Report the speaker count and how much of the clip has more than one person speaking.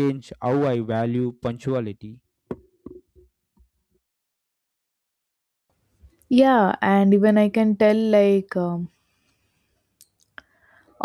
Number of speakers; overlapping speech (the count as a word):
two, no overlap